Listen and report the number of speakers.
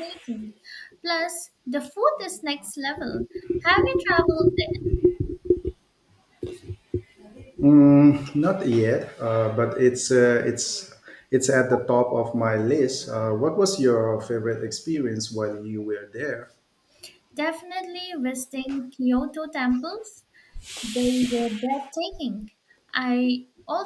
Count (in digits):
2